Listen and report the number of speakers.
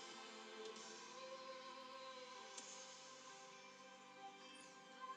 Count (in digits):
0